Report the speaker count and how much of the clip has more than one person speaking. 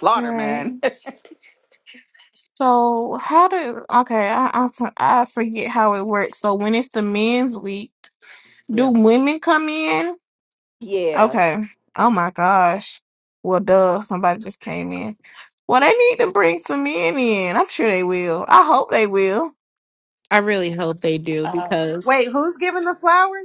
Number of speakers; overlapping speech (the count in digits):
4, about 6%